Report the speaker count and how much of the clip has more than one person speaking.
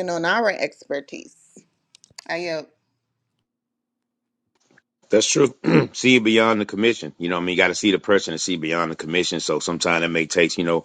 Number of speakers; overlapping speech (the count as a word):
two, no overlap